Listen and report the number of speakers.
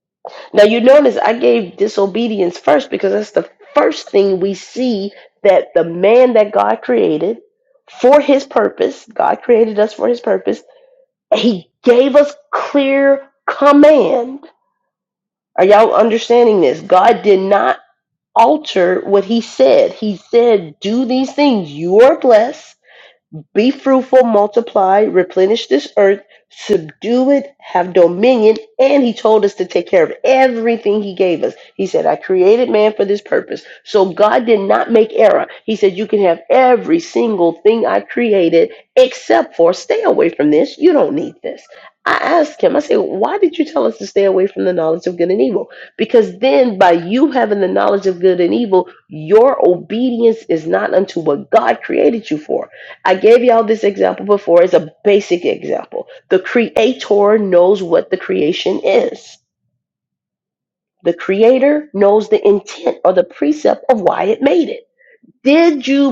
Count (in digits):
1